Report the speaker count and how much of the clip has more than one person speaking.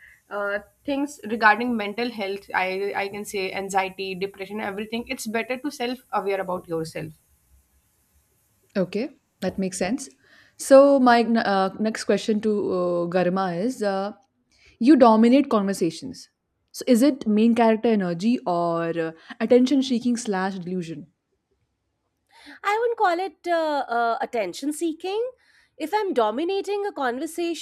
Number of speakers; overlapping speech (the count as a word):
three, no overlap